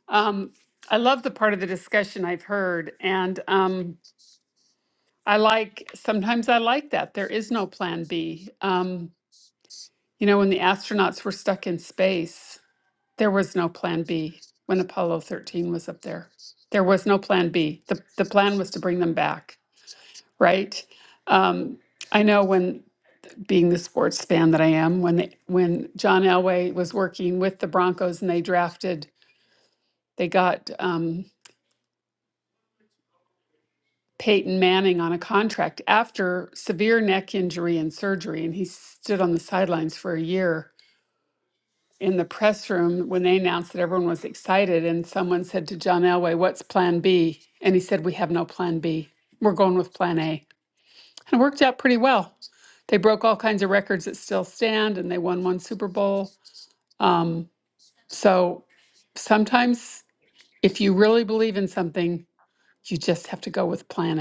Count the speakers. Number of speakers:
one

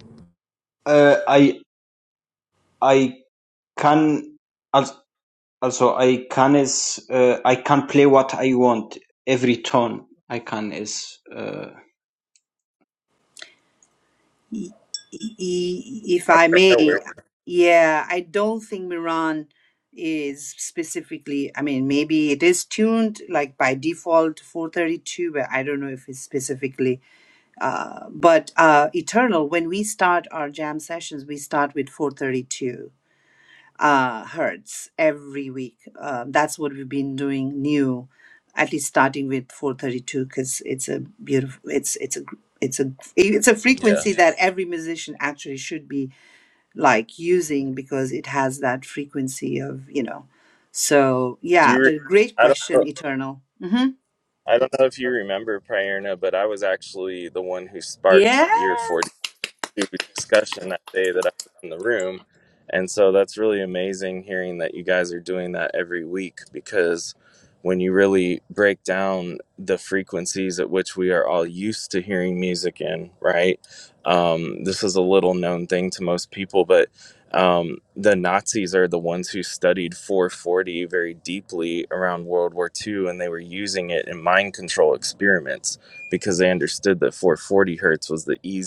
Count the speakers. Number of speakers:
three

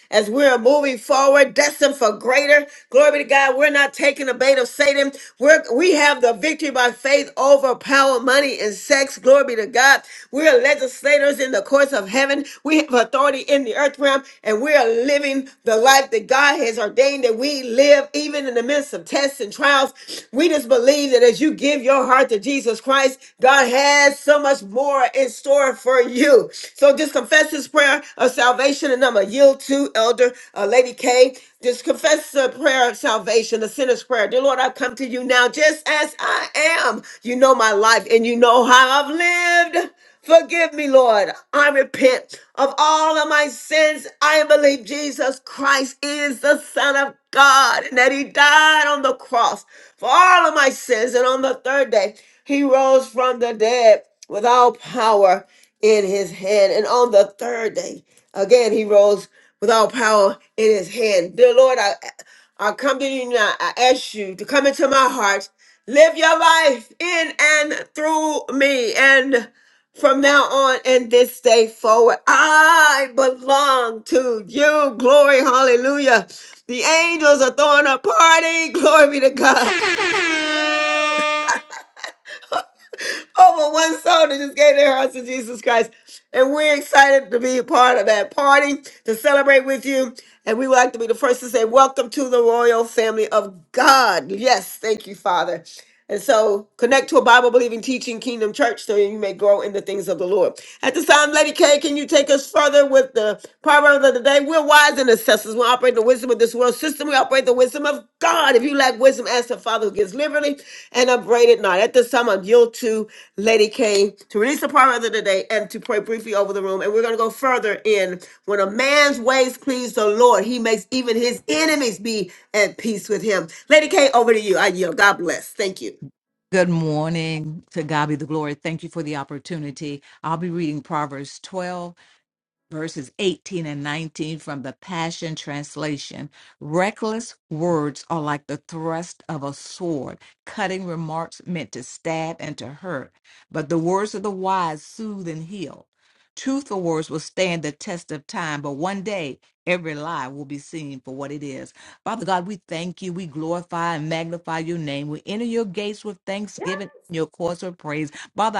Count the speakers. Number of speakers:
two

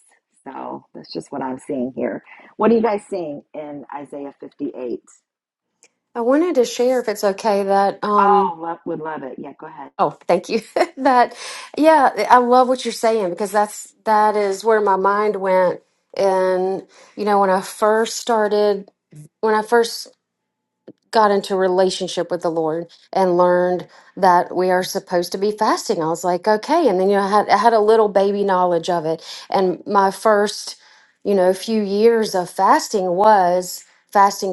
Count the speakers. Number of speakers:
two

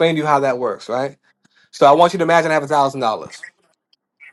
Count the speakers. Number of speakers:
one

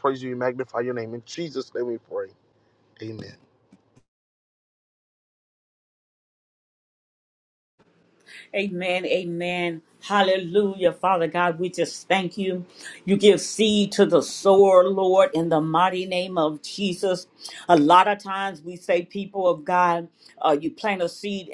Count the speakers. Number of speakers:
two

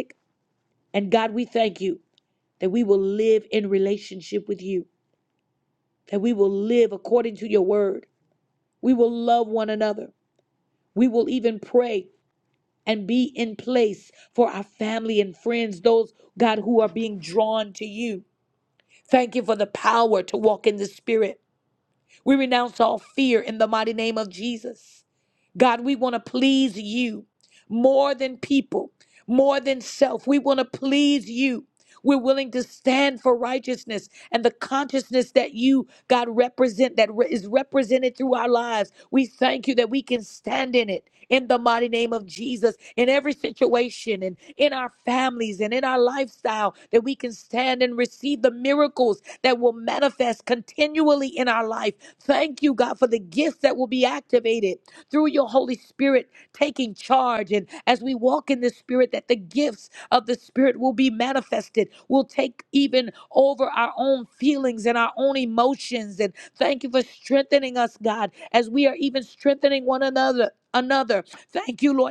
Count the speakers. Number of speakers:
one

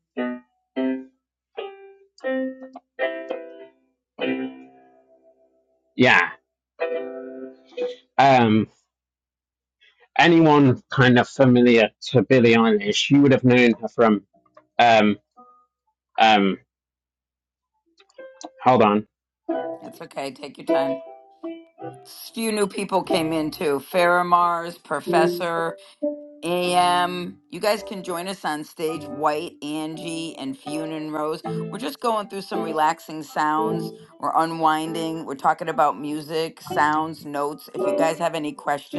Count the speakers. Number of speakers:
two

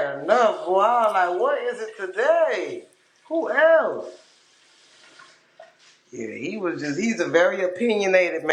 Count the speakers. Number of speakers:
one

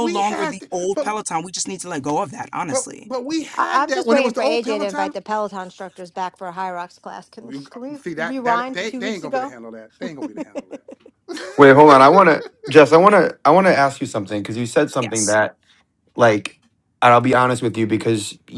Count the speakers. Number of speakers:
four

